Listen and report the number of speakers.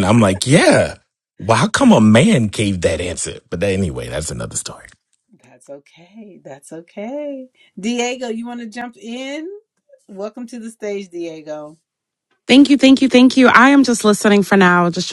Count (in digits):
3